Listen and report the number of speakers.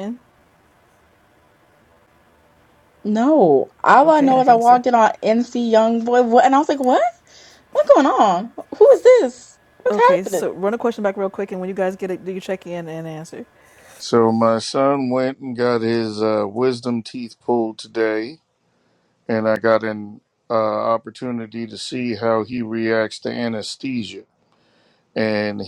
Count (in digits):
3